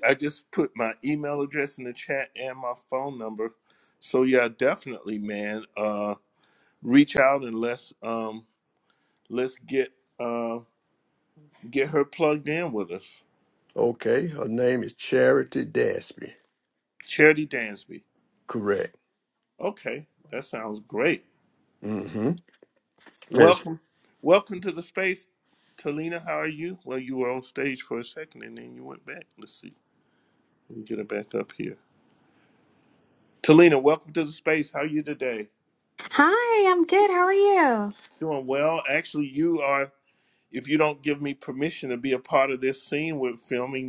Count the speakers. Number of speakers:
three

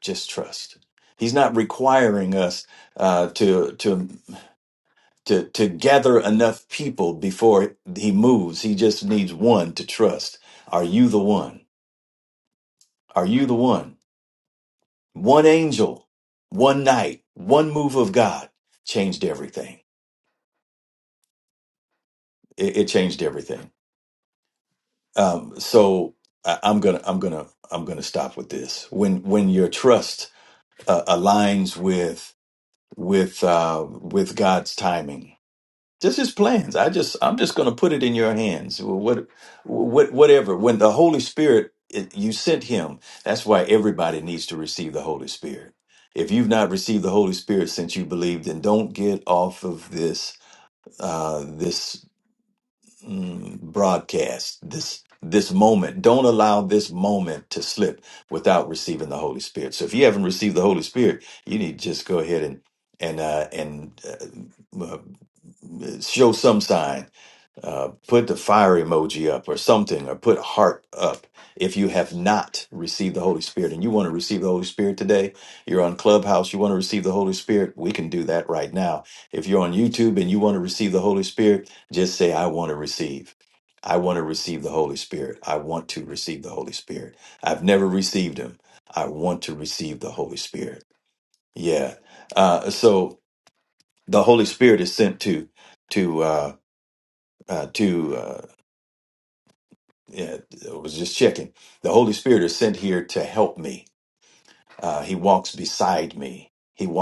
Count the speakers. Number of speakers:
one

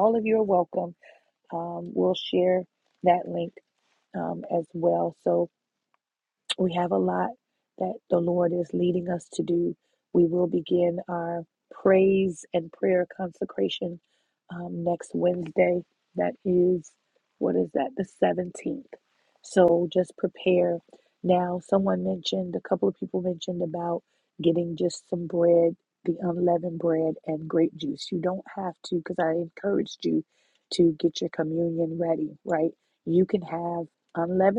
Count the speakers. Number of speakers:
one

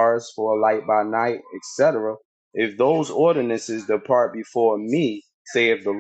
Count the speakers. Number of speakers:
one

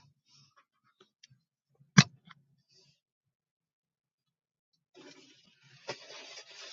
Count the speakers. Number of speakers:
zero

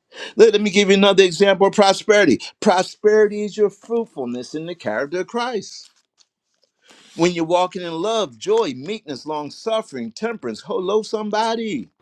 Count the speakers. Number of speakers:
one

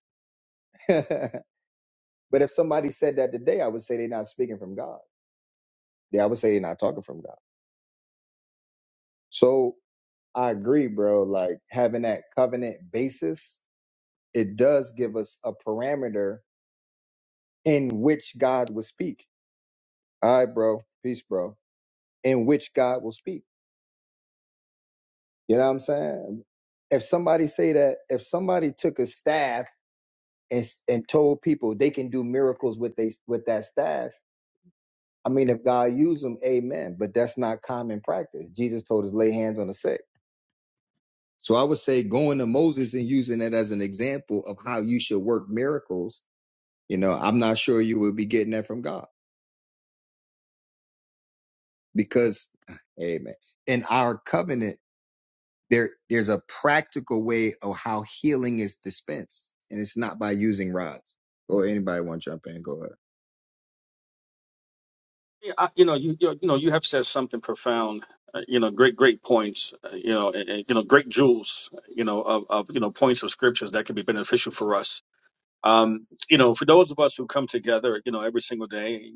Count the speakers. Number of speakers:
two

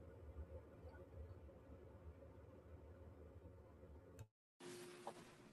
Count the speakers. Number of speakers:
zero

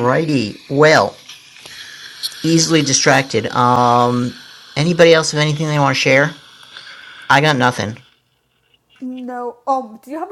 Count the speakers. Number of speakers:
two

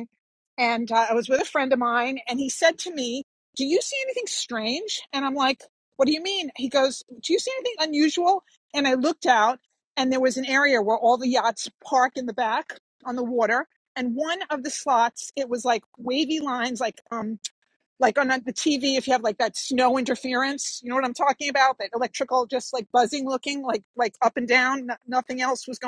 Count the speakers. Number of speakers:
one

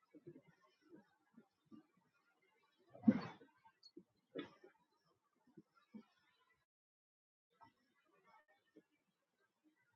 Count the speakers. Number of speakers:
zero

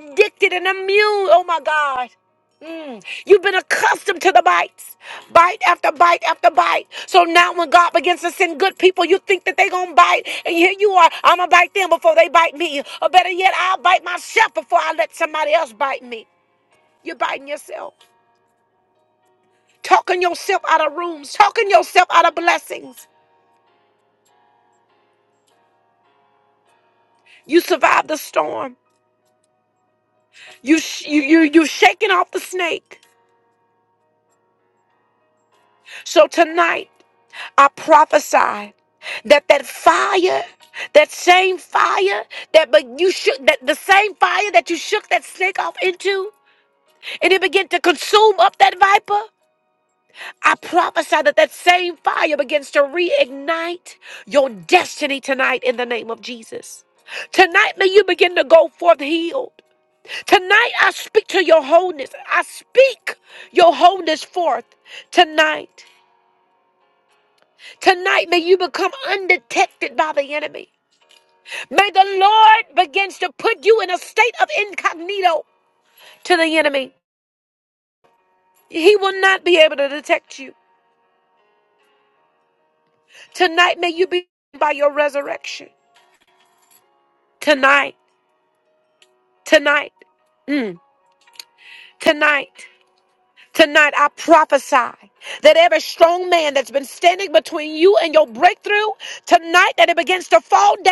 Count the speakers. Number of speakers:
one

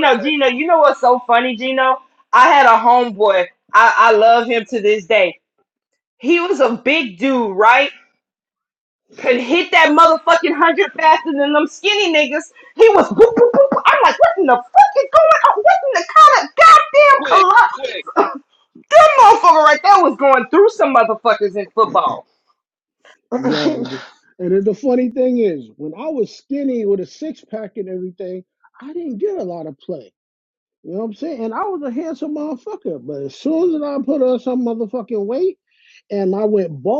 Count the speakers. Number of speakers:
three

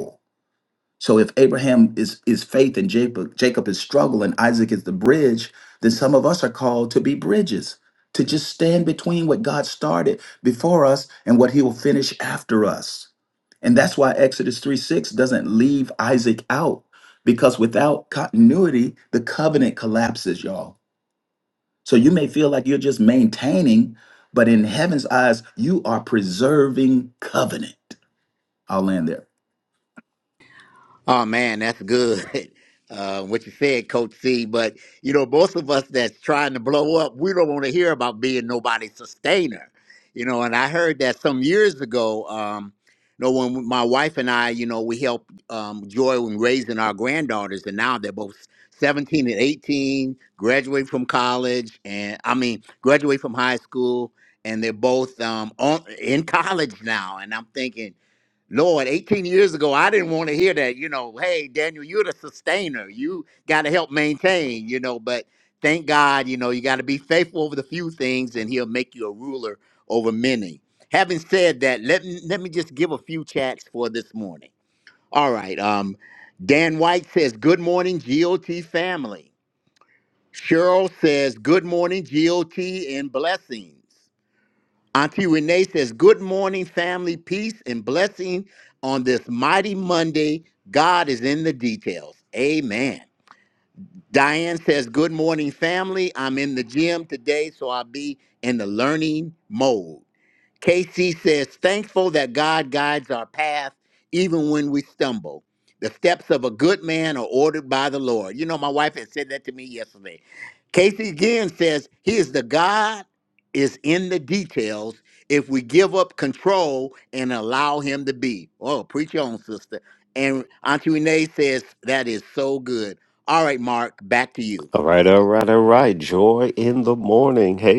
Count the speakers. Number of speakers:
three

